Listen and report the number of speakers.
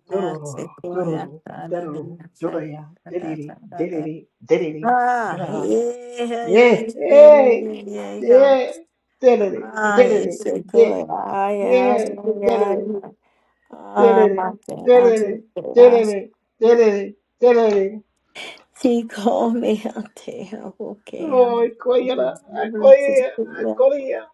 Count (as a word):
two